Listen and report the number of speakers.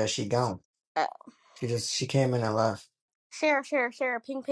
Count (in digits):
2